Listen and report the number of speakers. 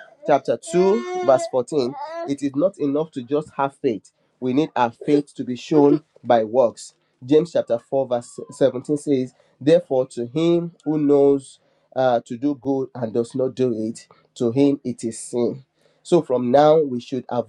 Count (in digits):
1